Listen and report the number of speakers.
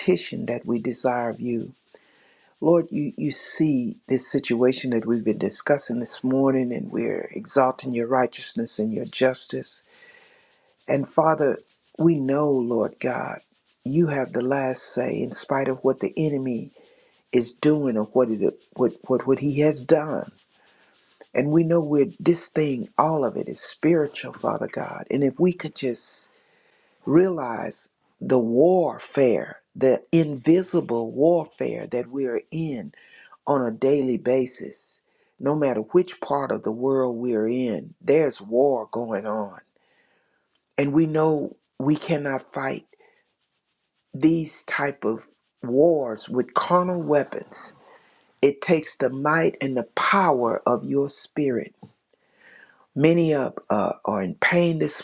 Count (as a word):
one